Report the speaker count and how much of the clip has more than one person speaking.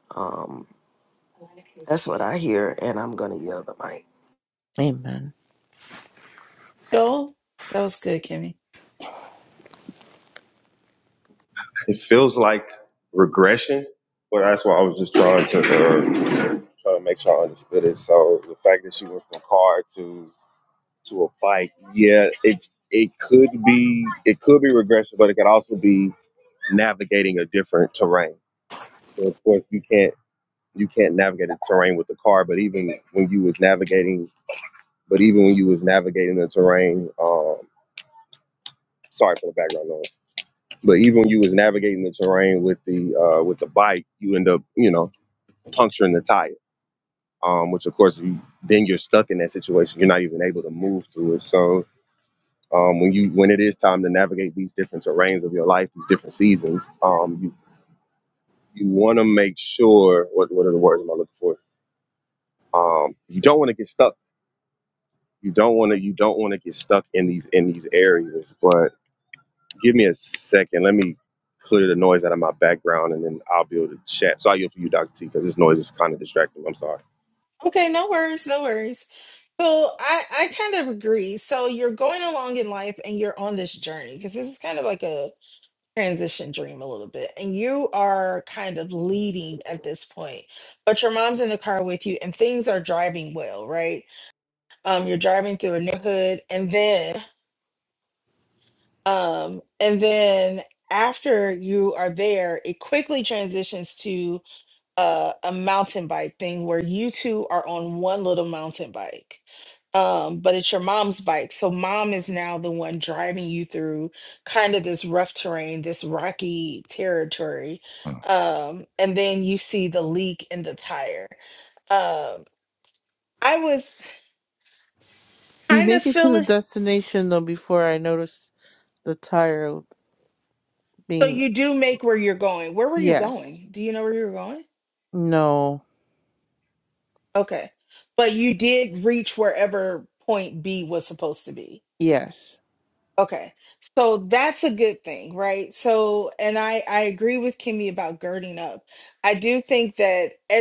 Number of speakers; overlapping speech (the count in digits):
4, about 1%